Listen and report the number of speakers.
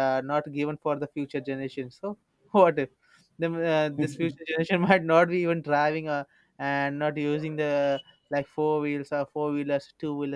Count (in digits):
1